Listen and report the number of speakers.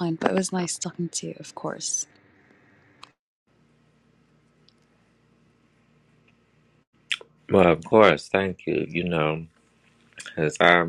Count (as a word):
two